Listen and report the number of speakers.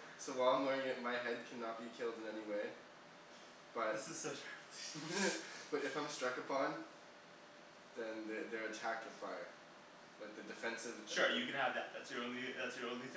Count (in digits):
2